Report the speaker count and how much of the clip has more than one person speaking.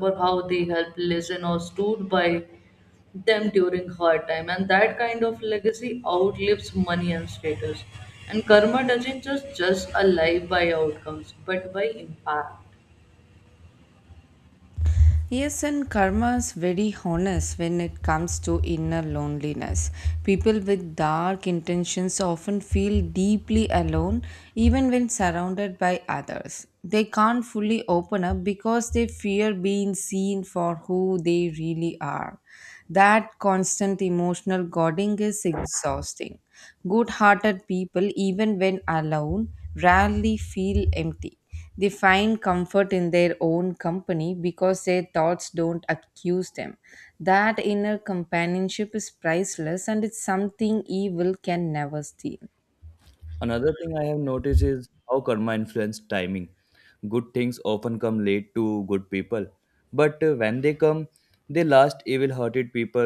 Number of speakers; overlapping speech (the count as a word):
three, no overlap